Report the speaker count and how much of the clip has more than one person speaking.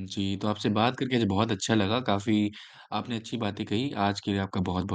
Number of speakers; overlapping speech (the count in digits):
1, no overlap